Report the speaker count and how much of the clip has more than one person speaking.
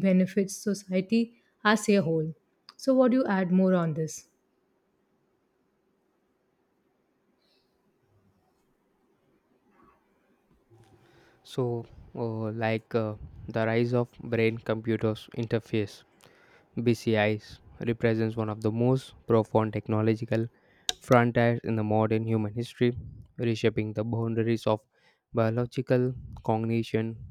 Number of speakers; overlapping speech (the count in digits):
2, no overlap